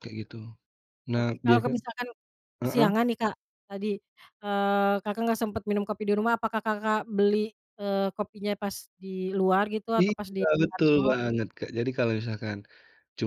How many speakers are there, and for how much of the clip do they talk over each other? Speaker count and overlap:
2, about 12%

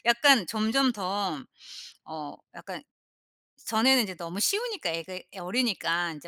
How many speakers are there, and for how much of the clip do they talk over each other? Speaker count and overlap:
1, no overlap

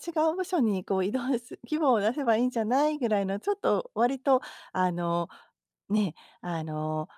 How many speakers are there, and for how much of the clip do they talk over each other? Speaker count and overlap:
1, no overlap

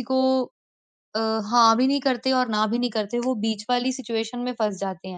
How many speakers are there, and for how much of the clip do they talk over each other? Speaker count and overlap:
1, no overlap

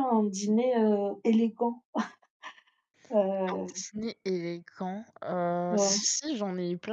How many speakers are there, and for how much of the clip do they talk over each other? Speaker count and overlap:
2, about 6%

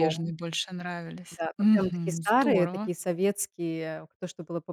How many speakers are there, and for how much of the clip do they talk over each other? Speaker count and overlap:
2, about 37%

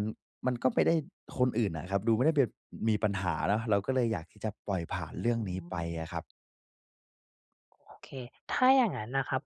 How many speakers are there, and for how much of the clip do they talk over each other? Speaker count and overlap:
2, no overlap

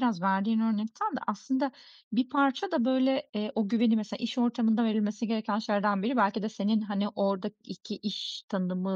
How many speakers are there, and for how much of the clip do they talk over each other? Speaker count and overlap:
1, no overlap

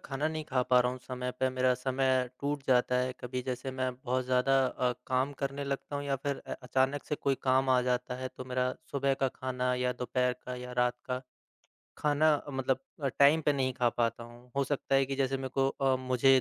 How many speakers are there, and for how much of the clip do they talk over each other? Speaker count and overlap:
1, no overlap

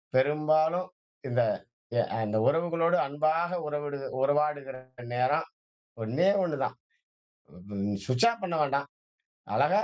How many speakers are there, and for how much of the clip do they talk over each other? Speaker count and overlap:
1, no overlap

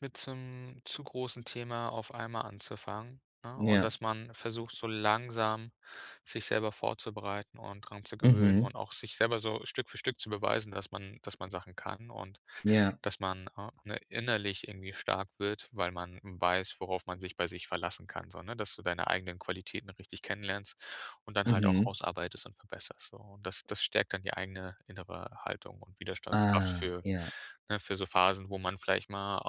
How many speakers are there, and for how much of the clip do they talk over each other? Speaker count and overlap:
2, about 7%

